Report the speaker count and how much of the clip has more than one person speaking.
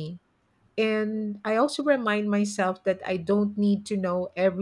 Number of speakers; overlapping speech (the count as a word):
one, no overlap